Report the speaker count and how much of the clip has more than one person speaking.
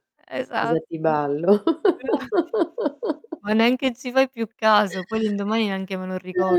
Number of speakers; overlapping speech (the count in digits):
2, about 7%